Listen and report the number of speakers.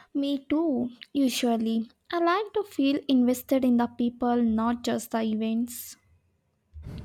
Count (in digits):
1